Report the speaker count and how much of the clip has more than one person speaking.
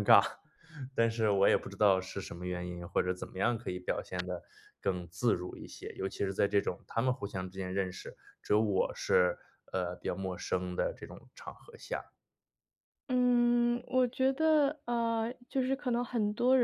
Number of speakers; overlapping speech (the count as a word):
two, no overlap